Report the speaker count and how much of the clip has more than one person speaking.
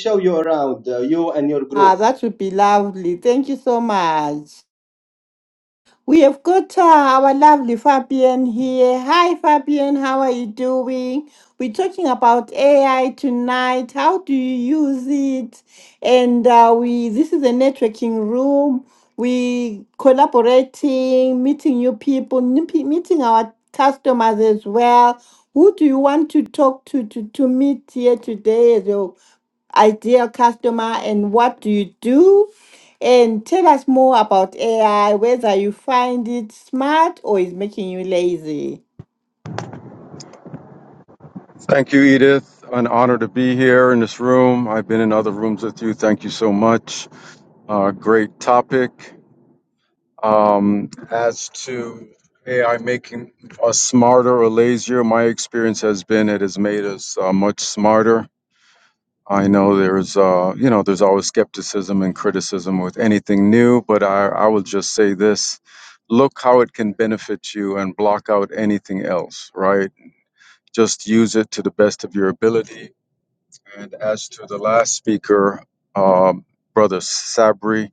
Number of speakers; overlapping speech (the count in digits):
3, under 1%